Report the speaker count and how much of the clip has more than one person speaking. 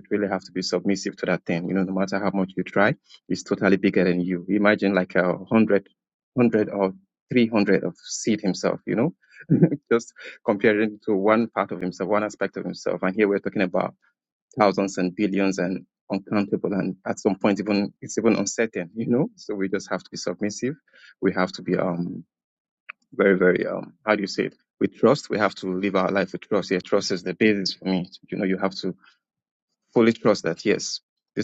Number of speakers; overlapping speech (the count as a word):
one, no overlap